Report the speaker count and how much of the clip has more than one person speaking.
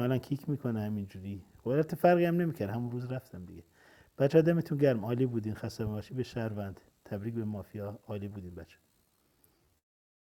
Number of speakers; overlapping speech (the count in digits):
1, no overlap